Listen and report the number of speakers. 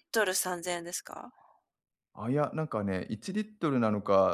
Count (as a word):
two